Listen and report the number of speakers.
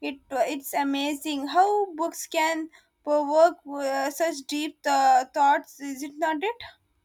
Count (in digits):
1